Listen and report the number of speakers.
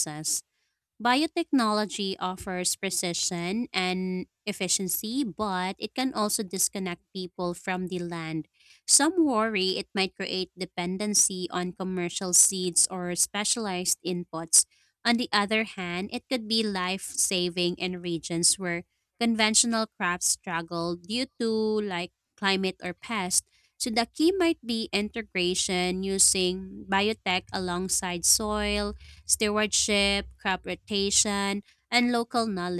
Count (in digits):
1